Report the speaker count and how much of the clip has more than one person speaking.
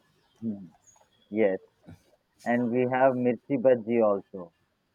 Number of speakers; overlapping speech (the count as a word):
one, no overlap